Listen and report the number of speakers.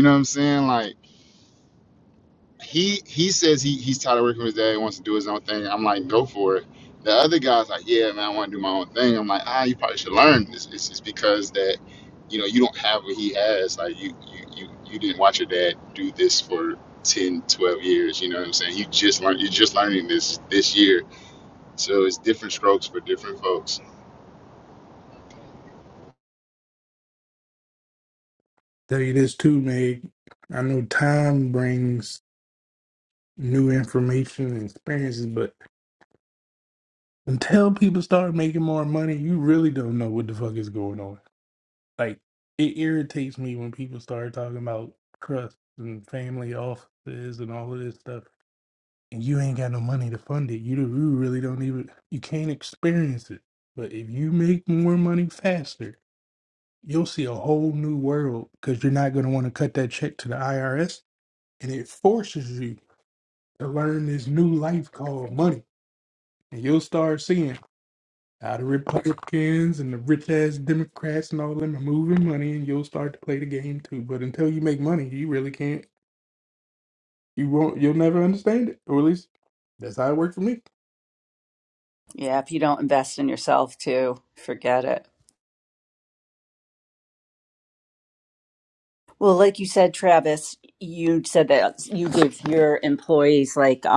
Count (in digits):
3